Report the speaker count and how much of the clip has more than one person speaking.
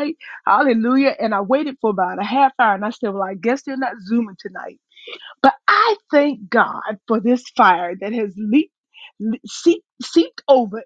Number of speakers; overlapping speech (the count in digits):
1, no overlap